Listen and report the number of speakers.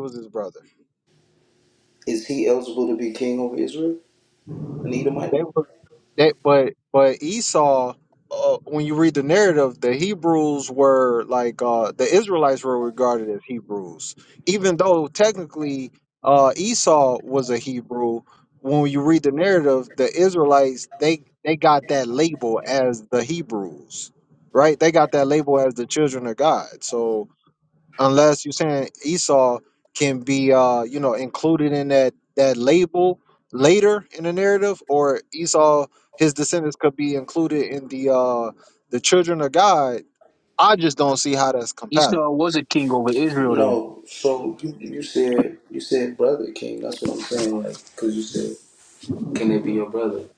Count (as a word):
three